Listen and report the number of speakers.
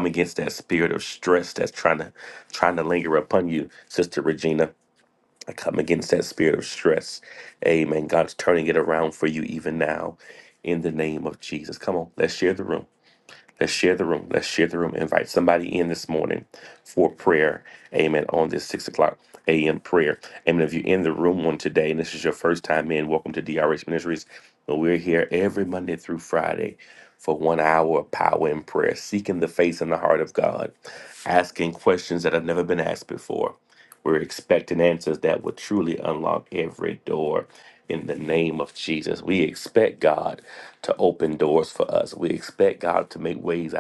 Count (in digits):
1